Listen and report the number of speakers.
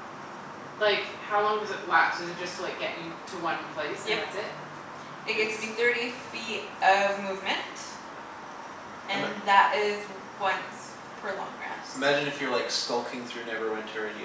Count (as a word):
three